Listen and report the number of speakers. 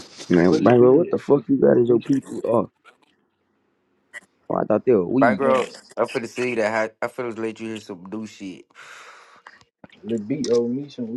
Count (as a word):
three